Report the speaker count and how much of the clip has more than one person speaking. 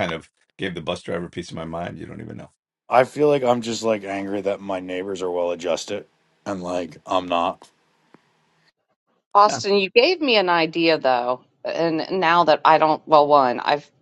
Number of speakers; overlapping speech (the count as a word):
three, about 1%